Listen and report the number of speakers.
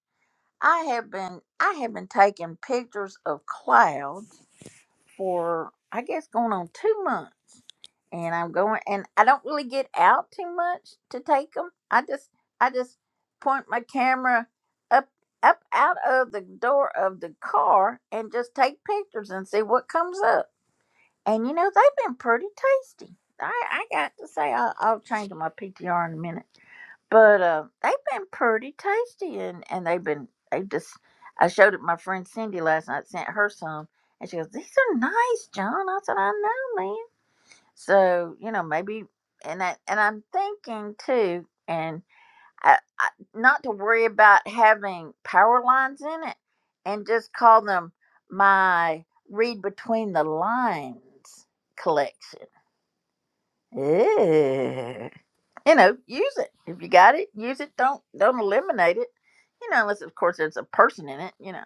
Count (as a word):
one